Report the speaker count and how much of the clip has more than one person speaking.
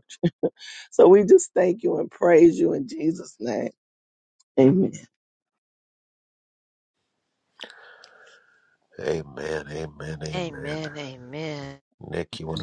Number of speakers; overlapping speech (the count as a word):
three, about 4%